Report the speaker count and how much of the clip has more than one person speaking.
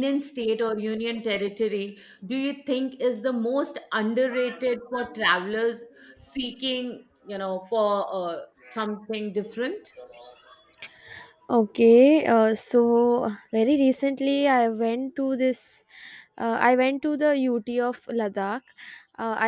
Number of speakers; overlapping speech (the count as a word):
two, no overlap